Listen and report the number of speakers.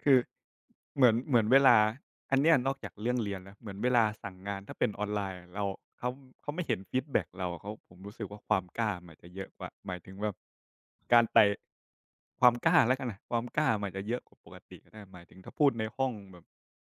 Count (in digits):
1